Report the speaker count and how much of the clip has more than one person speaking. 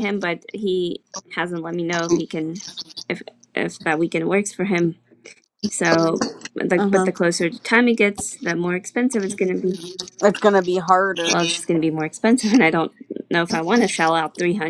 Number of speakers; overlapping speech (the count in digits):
2, about 3%